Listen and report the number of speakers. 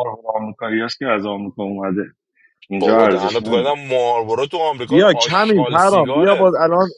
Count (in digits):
3